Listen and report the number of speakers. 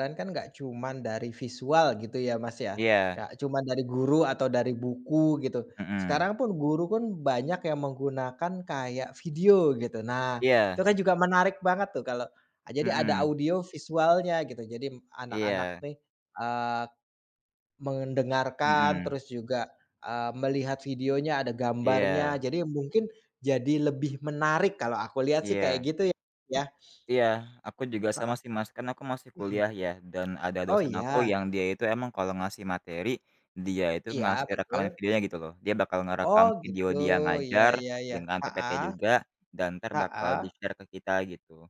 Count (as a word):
two